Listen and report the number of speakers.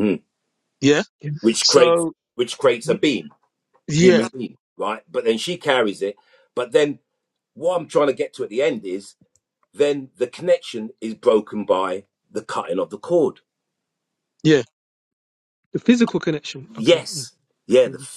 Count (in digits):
3